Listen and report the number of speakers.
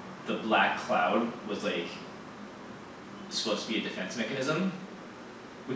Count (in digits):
1